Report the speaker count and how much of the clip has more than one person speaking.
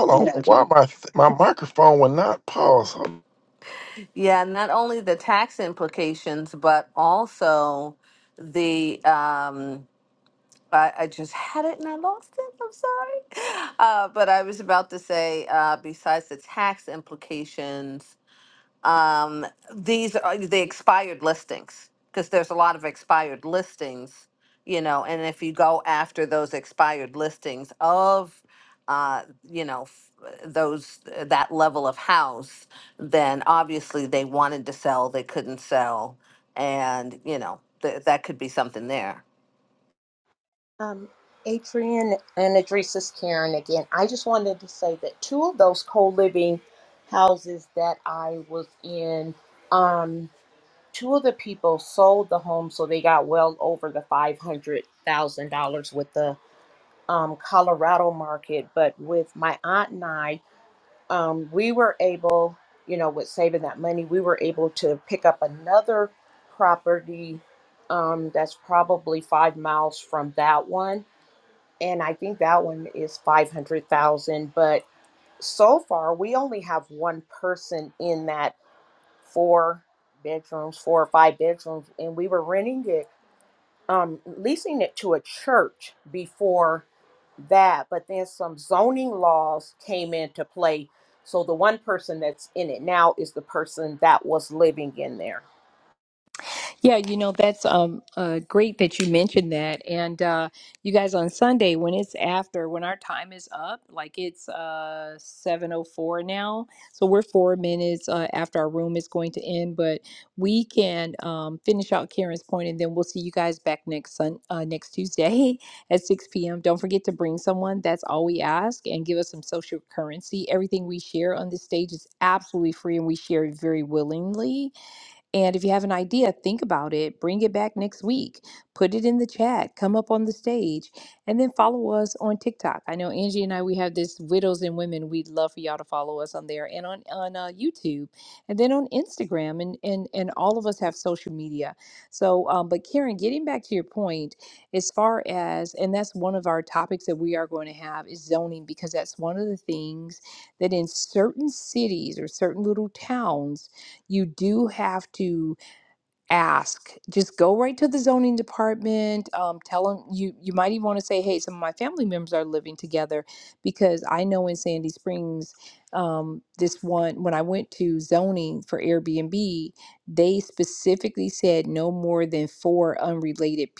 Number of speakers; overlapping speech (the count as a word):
four, no overlap